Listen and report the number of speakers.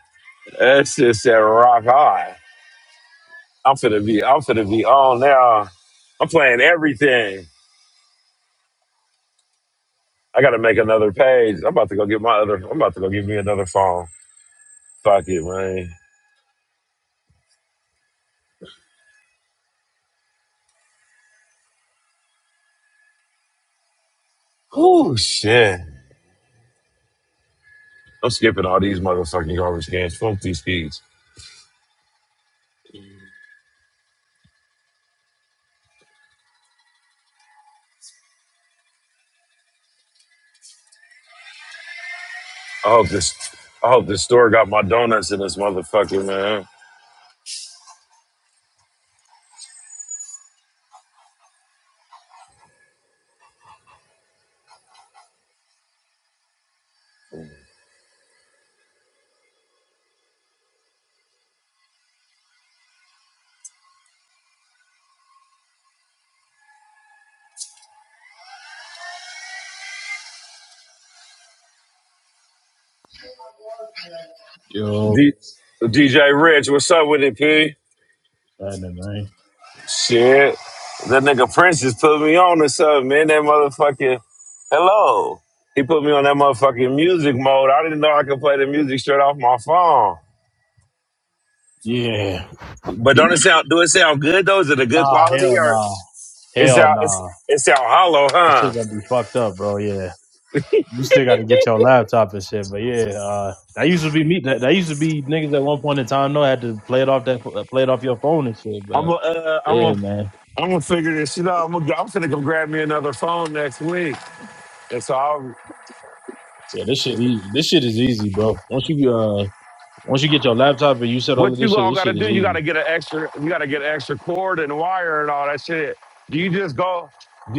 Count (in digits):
2